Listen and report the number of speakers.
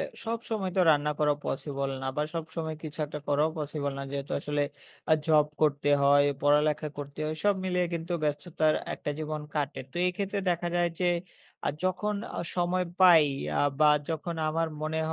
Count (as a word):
one